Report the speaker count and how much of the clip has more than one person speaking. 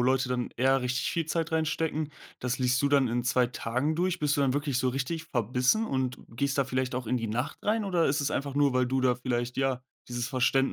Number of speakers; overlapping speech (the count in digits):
1, no overlap